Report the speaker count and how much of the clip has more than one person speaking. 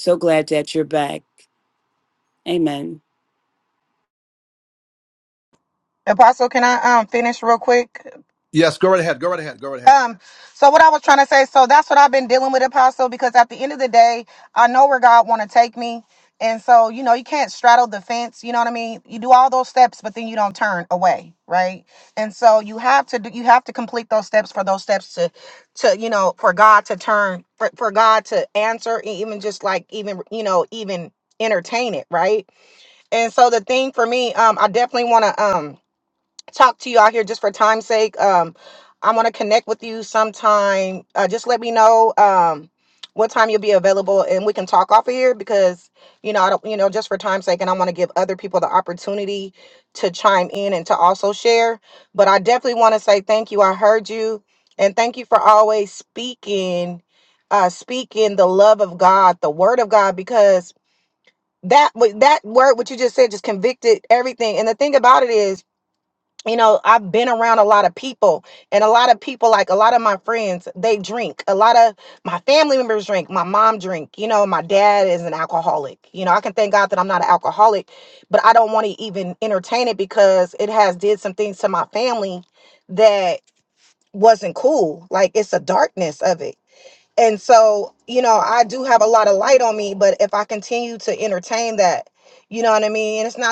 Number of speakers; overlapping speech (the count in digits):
3, under 1%